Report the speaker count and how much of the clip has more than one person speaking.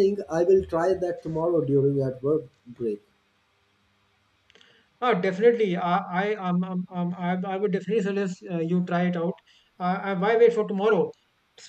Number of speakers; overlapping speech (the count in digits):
2, no overlap